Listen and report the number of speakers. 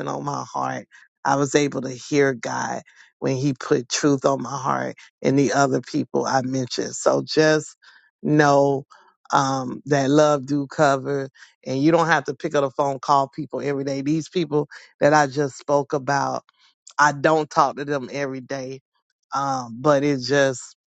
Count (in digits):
1